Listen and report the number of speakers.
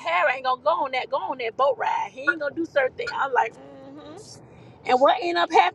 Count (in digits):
1